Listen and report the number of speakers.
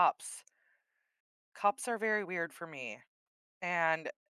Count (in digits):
1